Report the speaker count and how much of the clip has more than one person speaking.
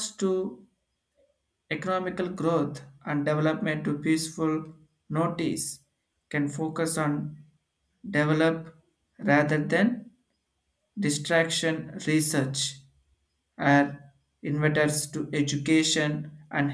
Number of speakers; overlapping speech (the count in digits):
1, no overlap